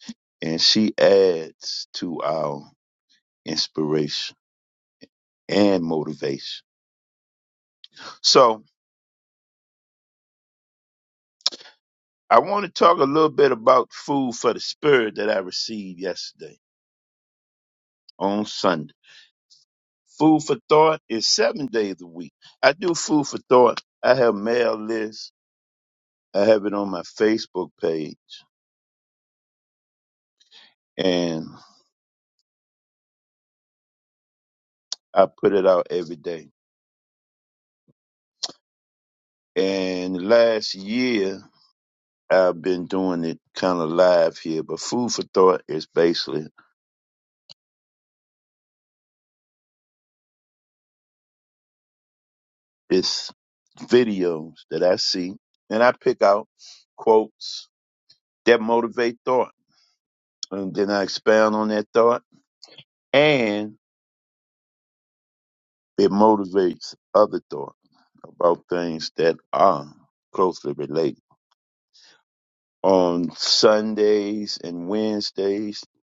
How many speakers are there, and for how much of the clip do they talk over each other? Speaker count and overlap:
one, no overlap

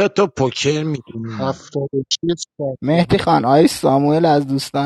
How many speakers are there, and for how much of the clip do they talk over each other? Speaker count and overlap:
three, about 13%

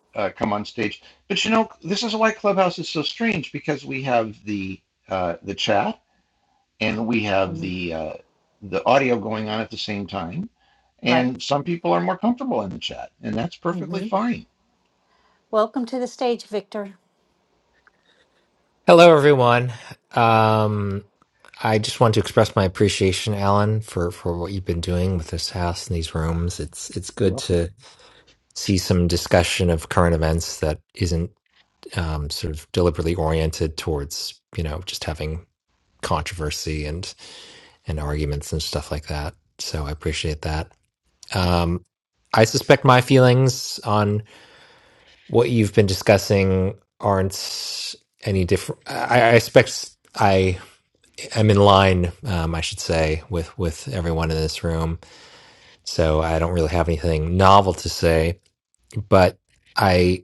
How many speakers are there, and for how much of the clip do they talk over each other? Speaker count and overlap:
three, about 2%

